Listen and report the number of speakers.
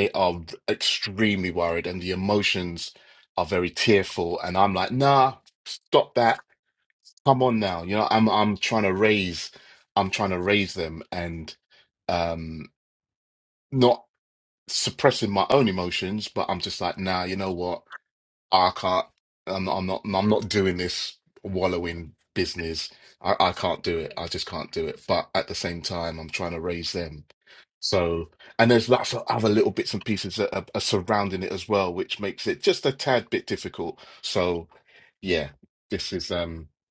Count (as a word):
one